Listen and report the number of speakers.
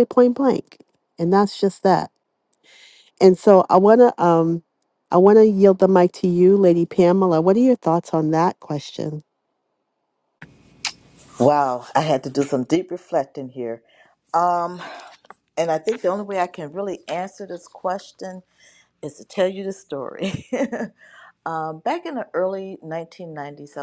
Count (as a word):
two